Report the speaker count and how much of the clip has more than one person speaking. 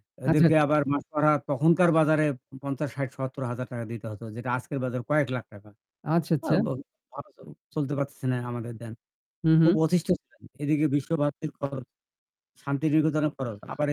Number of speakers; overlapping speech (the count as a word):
two, about 4%